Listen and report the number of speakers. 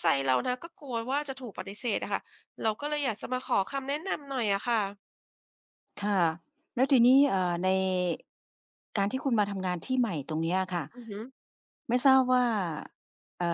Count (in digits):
2